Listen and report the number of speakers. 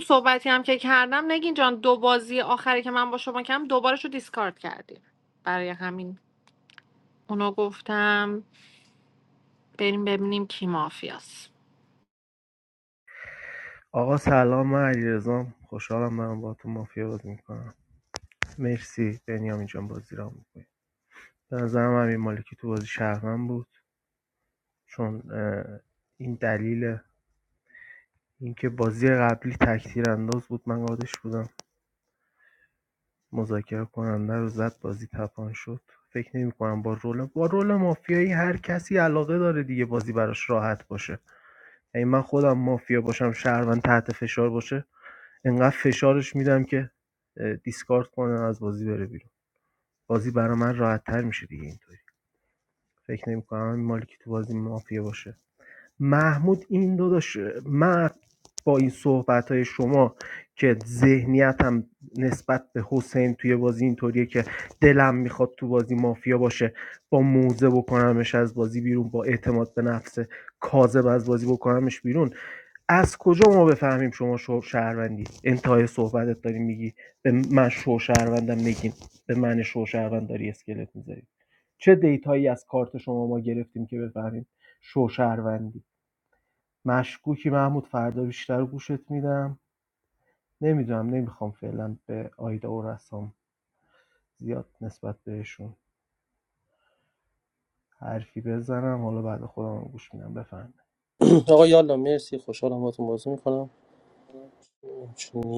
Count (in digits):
3